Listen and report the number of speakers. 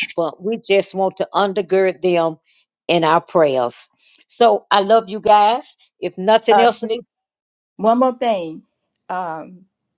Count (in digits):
2